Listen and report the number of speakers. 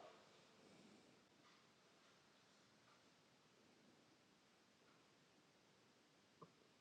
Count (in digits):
0